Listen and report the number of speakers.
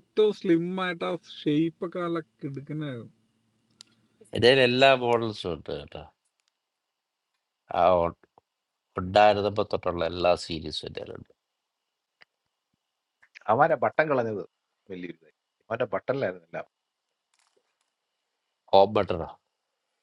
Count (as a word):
three